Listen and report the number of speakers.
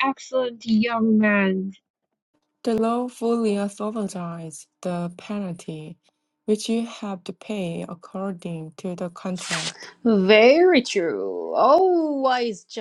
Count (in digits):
3